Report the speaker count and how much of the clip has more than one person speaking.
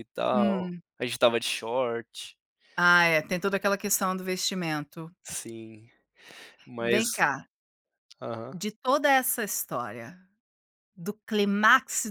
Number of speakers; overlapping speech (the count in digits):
2, about 5%